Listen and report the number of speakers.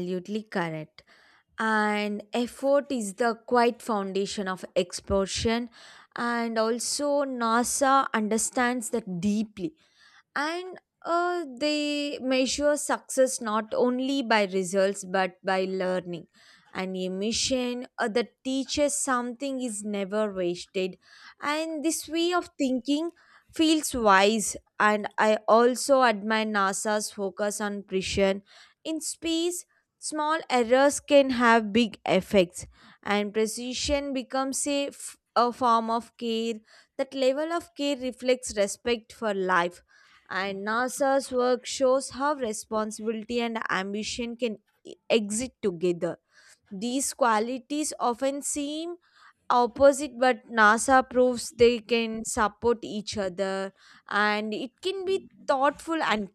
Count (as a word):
one